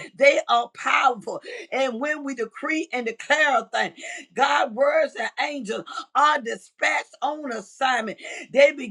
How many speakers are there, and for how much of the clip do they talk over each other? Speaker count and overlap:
1, no overlap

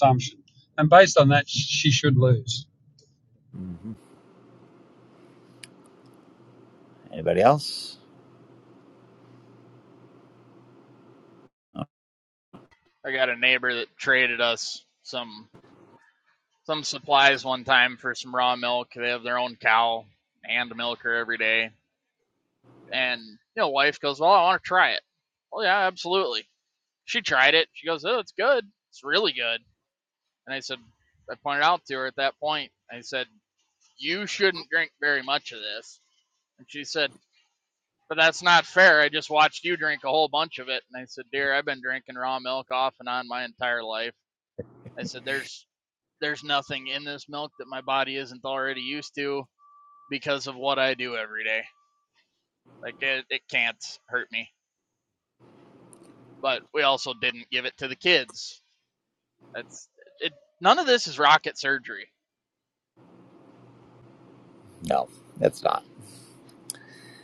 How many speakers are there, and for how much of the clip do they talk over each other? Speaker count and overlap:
3, no overlap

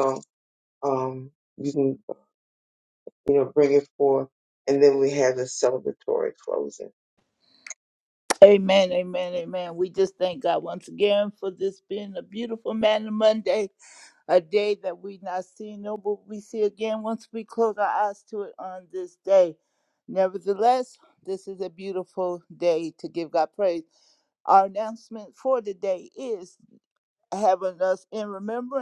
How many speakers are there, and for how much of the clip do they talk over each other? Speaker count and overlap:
2, no overlap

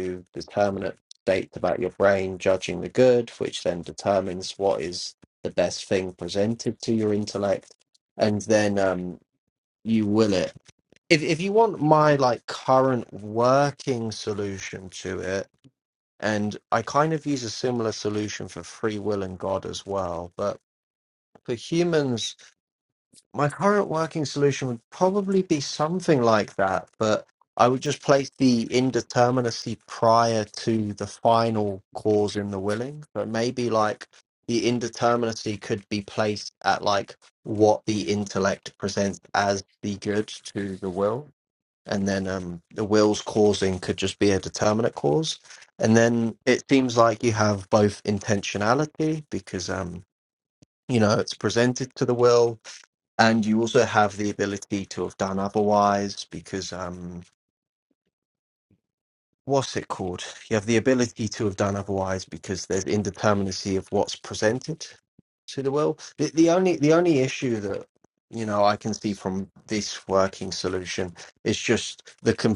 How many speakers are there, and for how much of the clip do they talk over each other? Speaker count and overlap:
1, no overlap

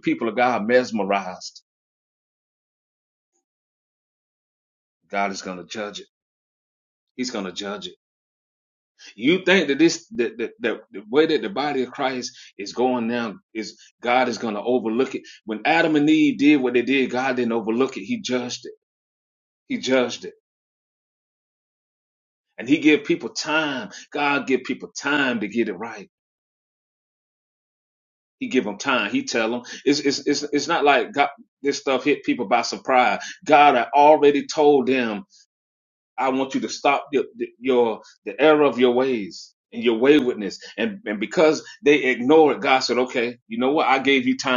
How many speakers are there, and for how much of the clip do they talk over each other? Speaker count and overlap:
1, no overlap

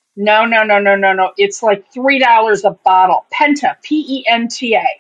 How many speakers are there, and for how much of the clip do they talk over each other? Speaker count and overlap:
1, no overlap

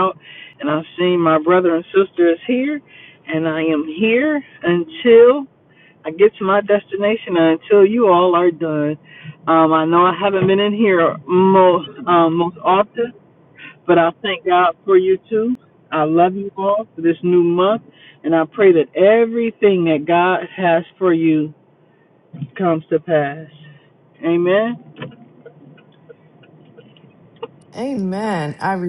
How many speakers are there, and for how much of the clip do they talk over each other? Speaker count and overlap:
2, no overlap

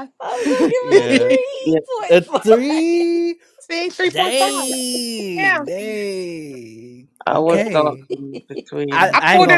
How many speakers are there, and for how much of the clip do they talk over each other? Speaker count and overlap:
4, about 39%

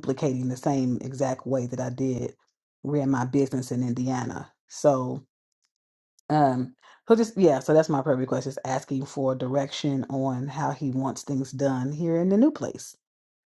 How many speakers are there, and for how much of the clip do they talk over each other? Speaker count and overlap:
1, no overlap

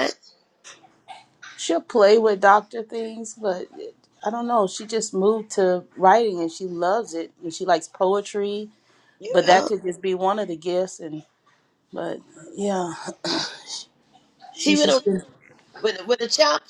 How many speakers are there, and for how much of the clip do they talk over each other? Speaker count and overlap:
2, about 5%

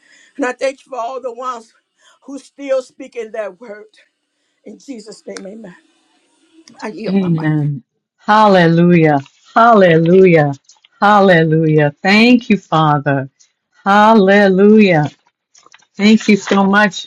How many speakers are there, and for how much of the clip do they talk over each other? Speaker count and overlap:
2, about 2%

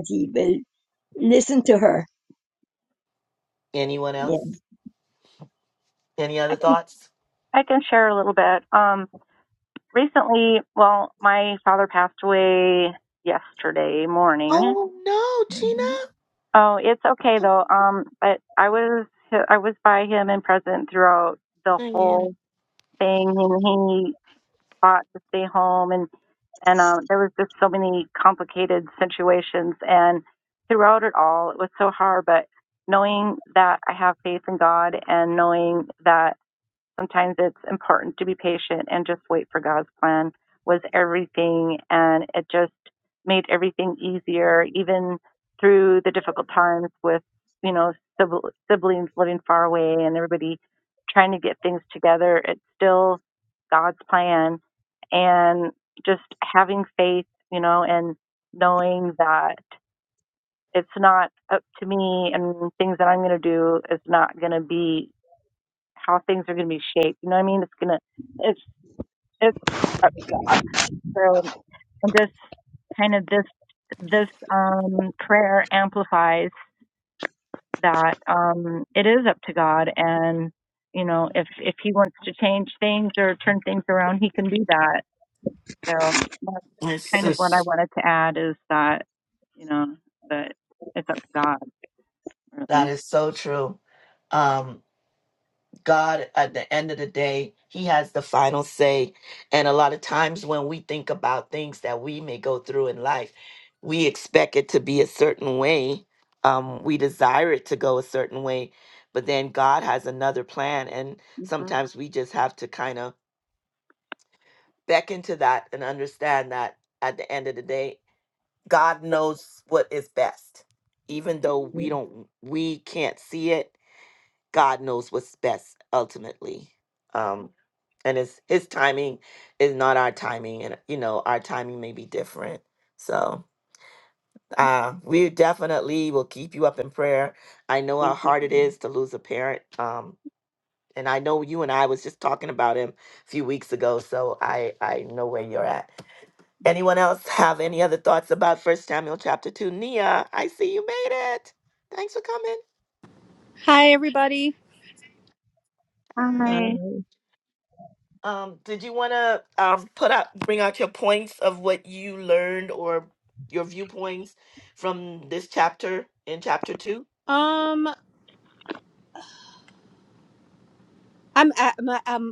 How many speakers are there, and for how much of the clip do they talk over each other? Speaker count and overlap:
4, about 2%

